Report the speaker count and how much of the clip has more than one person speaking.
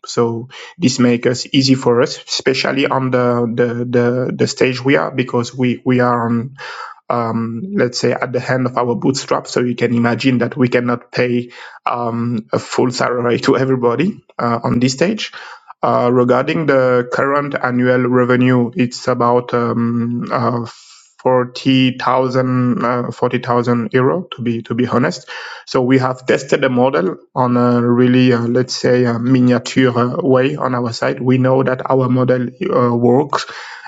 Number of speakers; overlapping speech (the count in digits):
1, no overlap